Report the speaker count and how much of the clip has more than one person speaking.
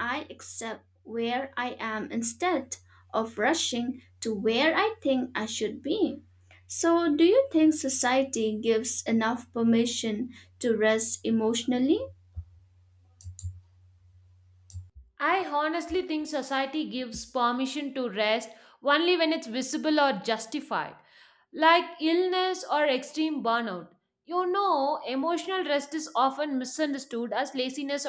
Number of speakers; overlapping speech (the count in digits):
2, no overlap